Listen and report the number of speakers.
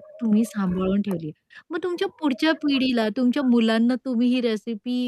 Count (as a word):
one